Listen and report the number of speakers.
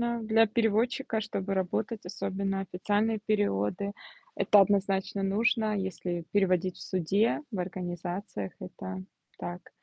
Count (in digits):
1